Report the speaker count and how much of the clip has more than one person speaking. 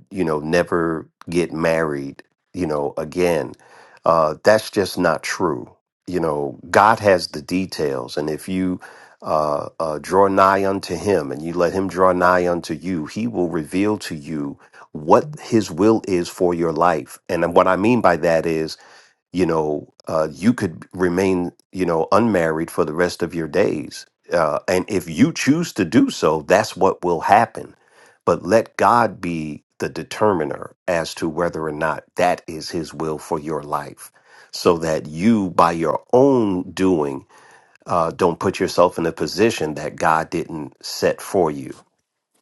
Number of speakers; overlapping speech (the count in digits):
1, no overlap